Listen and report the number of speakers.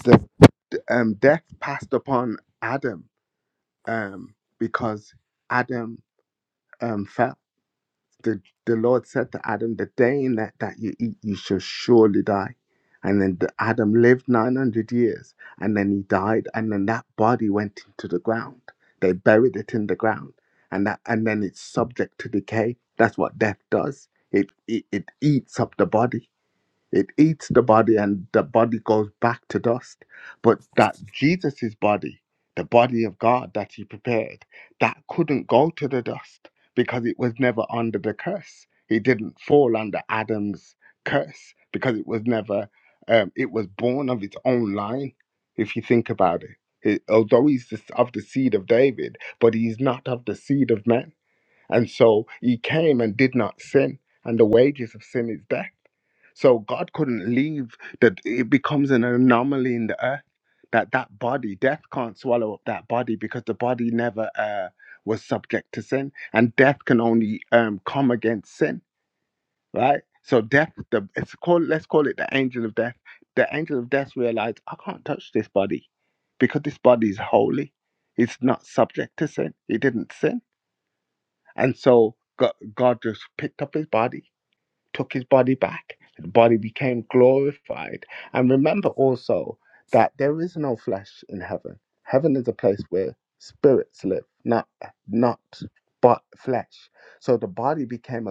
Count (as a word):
one